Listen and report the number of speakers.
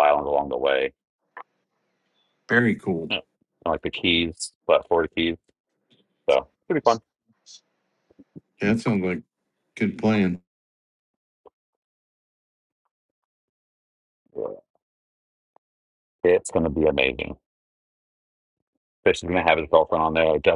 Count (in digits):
2